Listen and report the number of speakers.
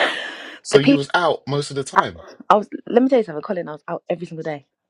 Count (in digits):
2